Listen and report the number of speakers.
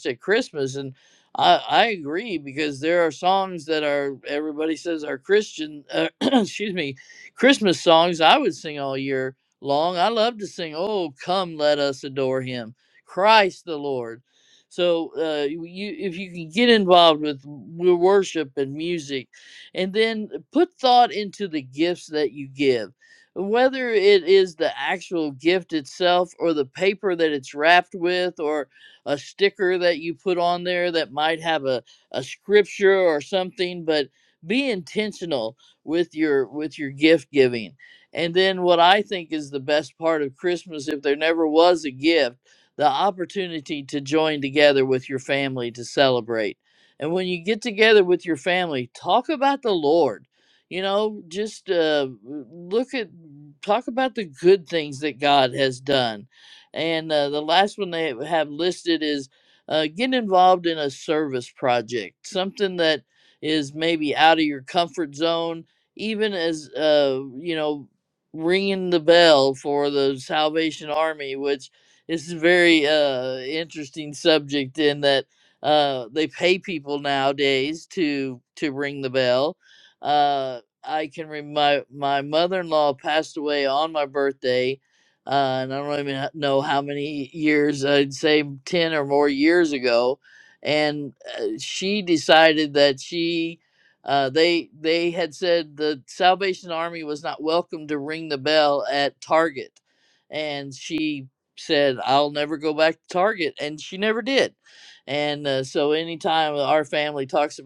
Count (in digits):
1